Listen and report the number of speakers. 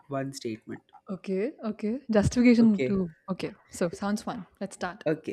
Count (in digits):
2